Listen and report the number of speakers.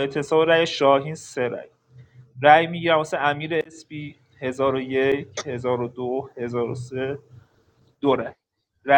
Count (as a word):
one